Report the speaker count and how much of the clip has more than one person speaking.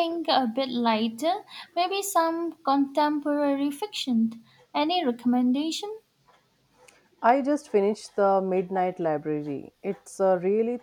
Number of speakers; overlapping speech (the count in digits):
2, no overlap